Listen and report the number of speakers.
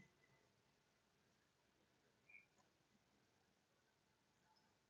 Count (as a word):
zero